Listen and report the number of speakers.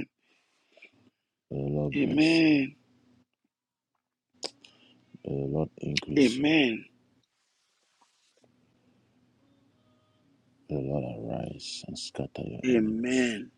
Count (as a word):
two